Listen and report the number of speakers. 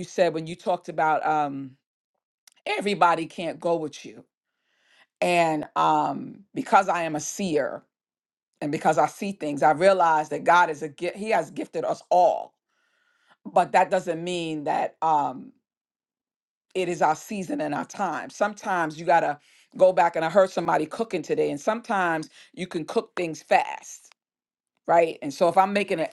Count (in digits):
1